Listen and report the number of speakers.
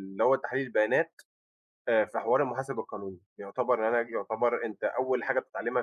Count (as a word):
one